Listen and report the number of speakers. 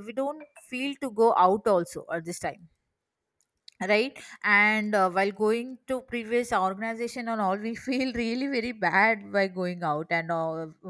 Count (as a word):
one